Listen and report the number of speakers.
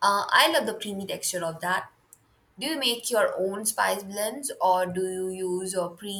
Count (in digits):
1